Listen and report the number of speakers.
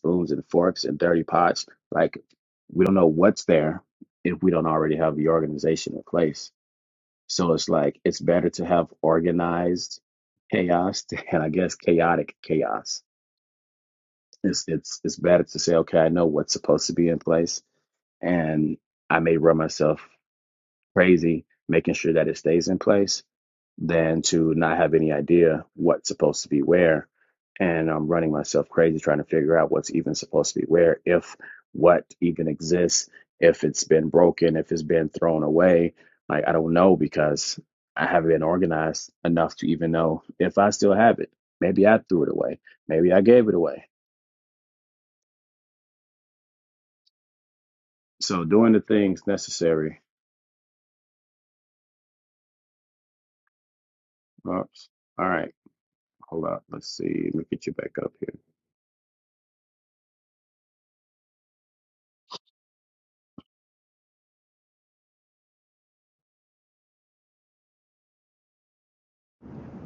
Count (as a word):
one